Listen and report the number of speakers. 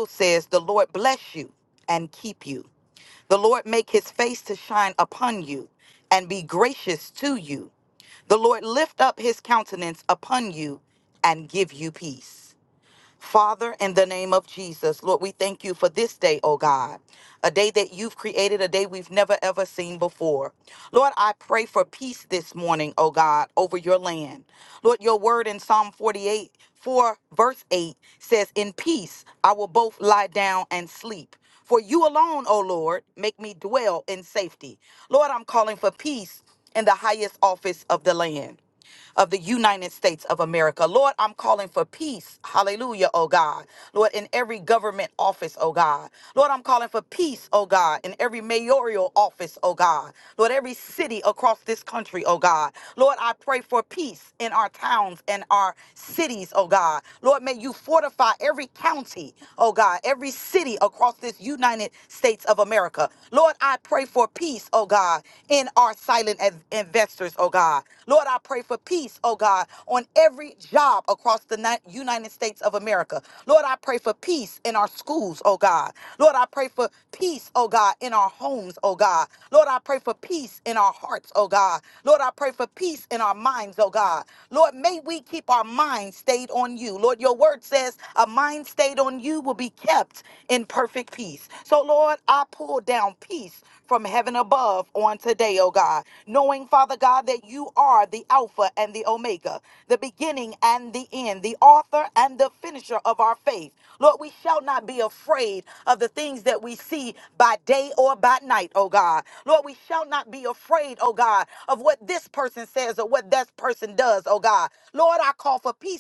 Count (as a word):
one